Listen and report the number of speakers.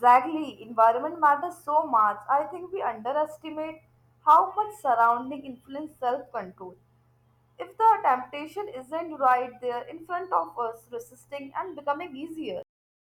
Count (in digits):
1